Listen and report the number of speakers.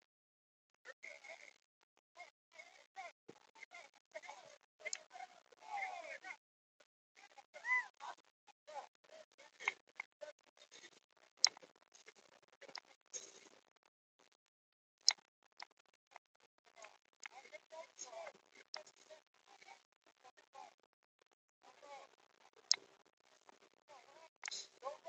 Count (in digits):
0